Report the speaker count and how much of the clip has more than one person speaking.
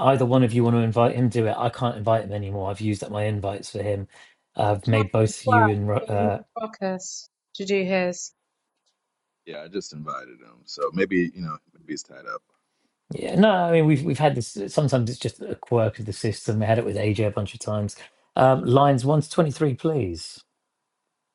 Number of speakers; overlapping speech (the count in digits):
3, about 4%